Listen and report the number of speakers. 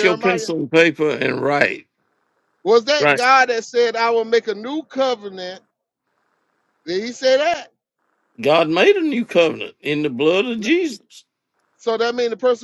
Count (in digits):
2